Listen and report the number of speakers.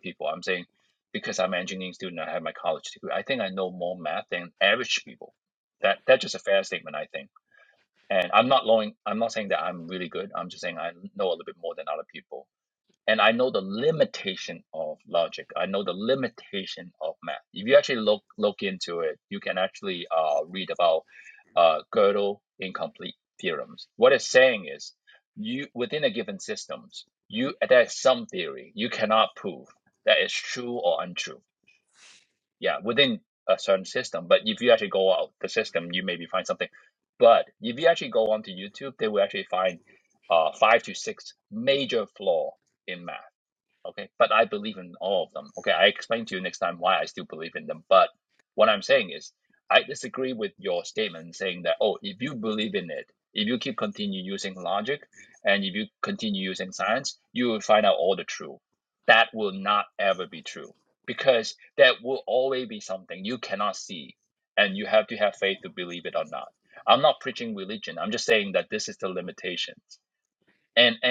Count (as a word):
one